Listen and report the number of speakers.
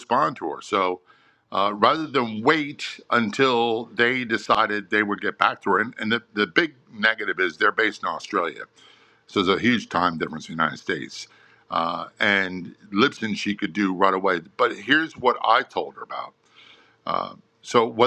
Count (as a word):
one